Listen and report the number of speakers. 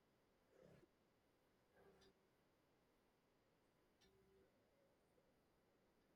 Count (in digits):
0